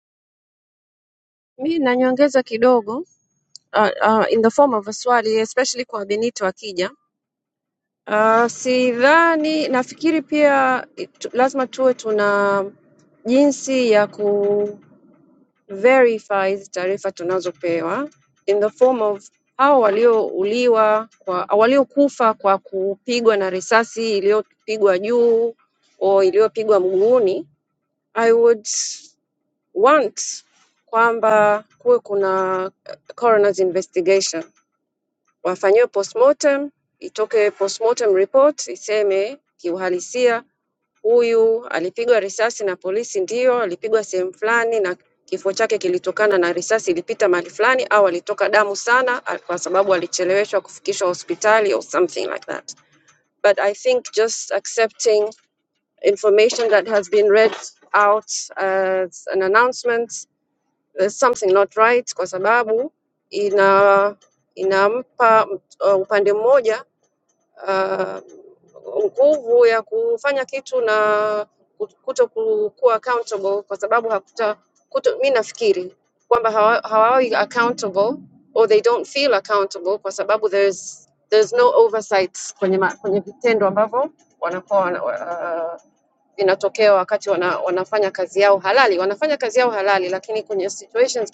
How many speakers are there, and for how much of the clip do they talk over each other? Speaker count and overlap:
1, no overlap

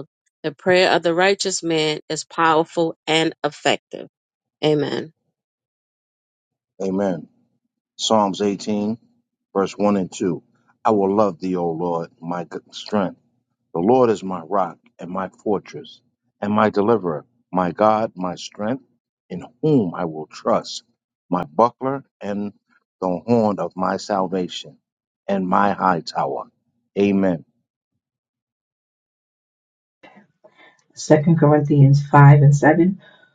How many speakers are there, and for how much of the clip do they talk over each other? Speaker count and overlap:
3, no overlap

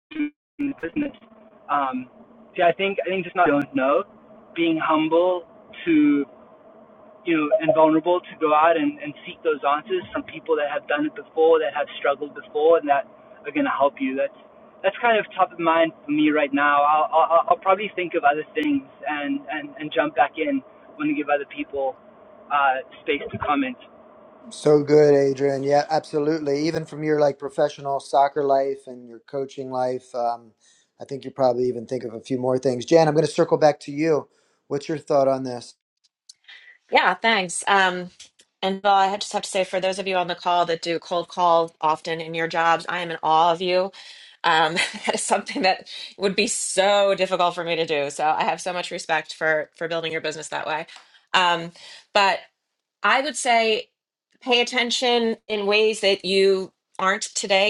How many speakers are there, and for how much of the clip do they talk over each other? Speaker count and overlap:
3, no overlap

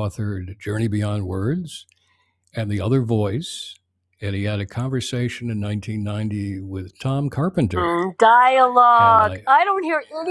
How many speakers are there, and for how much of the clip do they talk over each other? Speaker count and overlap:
2, about 8%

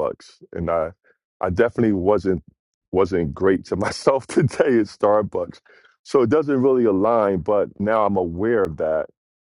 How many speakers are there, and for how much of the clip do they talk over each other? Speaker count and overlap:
1, no overlap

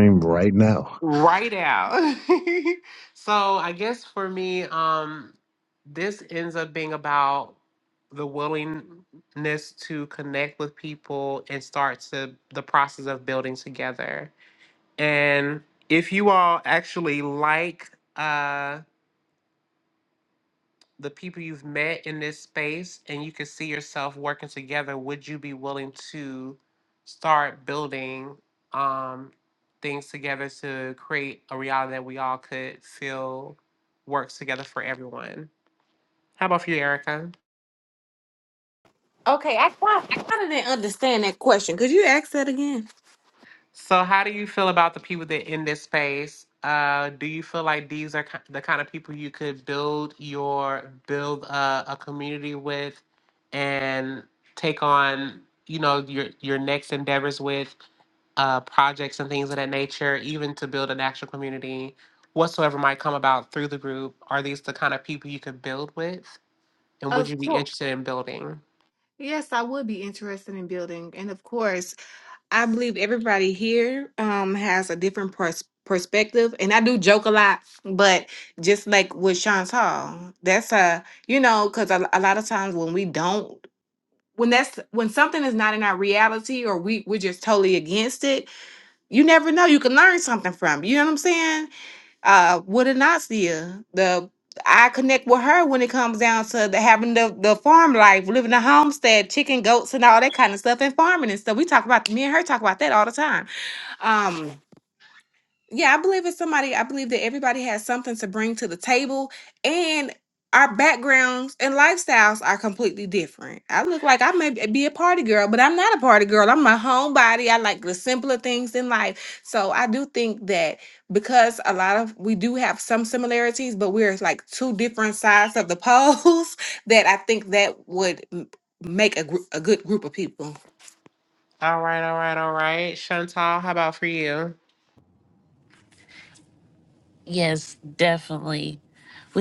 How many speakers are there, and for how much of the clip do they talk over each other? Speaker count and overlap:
4, under 1%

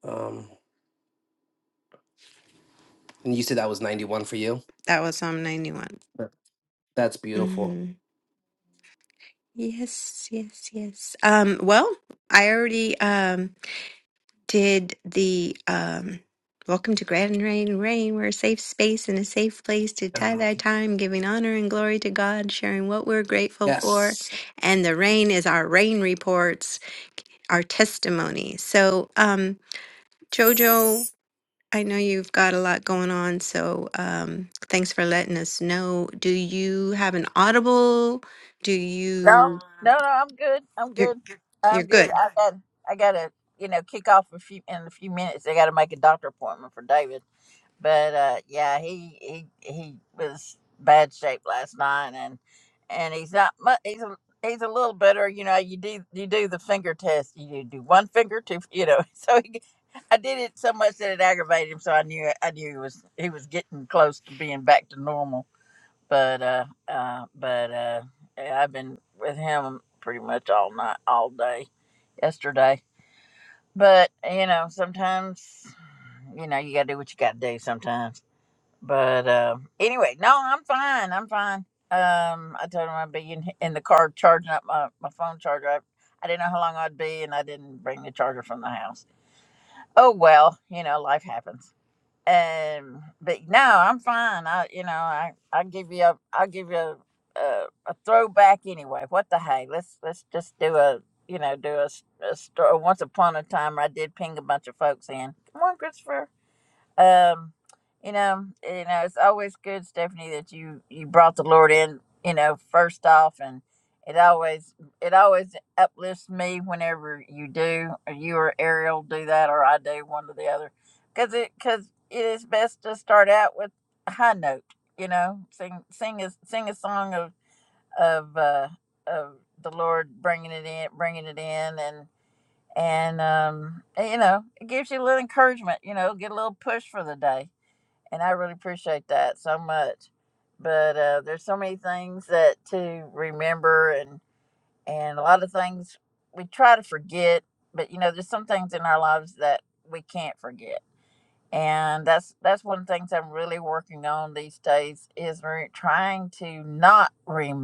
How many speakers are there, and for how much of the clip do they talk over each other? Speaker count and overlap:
3, about 1%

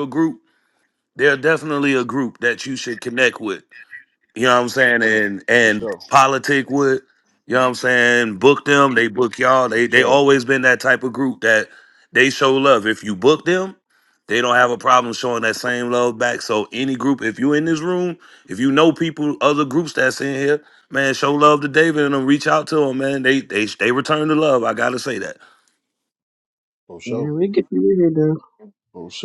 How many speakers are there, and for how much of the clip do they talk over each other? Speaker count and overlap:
3, about 3%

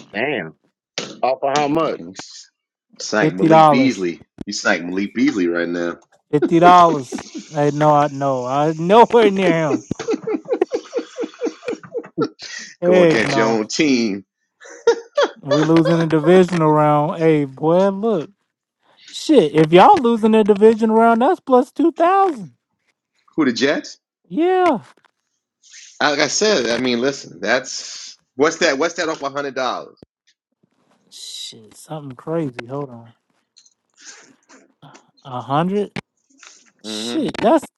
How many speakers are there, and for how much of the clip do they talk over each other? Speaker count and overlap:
3, about 5%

